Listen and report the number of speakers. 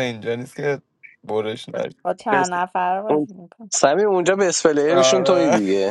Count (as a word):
three